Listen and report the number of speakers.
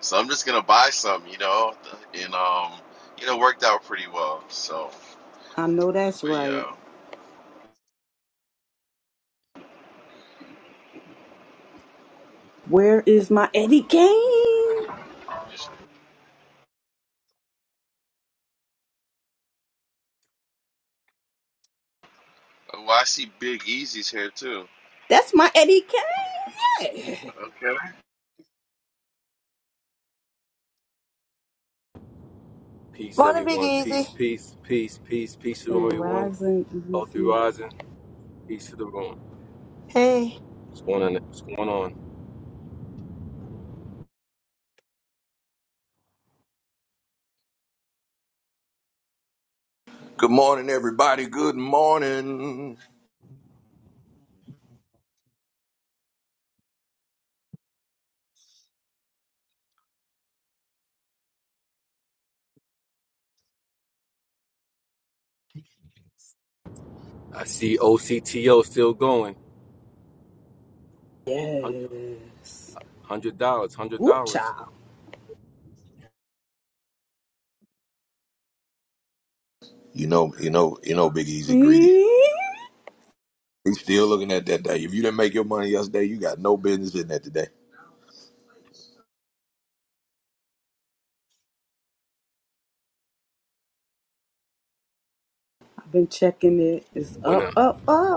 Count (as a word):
five